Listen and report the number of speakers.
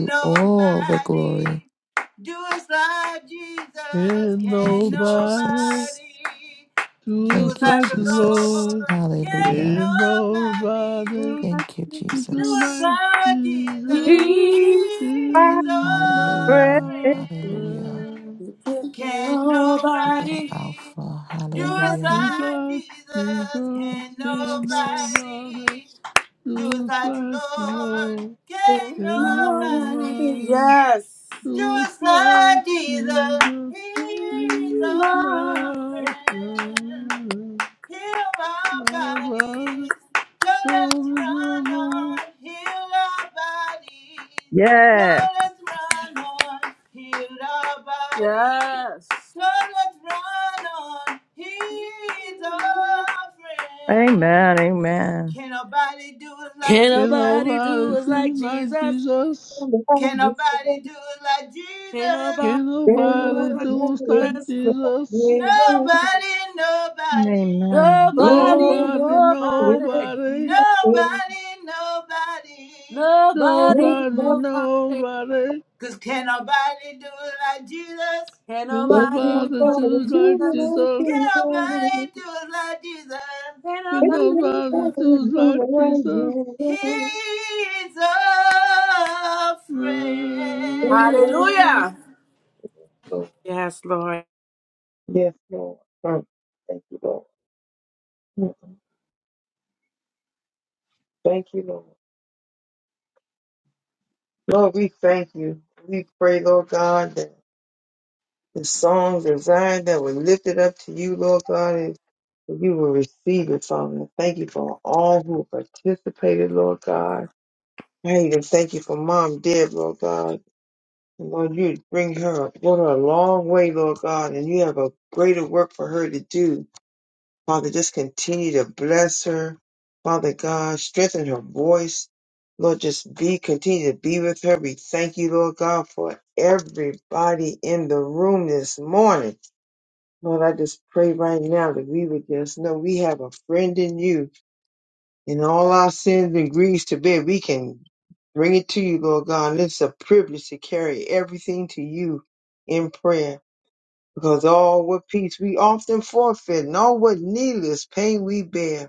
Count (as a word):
six